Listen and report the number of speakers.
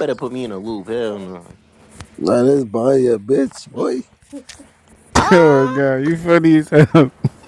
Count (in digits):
3